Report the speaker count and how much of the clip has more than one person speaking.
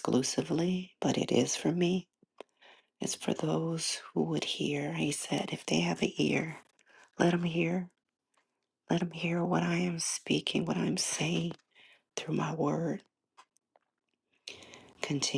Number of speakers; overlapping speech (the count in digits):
1, no overlap